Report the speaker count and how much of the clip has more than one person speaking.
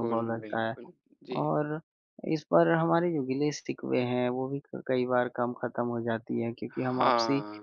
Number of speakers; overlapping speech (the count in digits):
2, about 21%